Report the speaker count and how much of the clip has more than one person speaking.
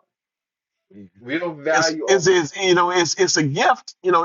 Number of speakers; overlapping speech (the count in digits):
2, about 17%